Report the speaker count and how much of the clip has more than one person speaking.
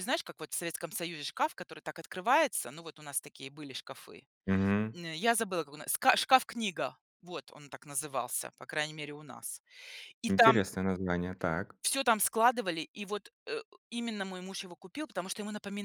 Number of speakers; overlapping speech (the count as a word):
two, about 2%